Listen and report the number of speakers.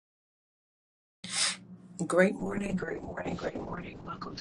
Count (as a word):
one